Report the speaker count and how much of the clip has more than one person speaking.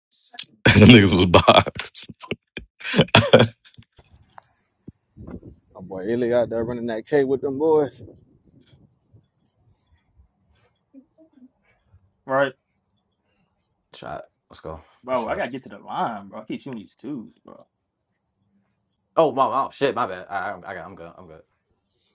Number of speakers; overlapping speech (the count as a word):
four, about 2%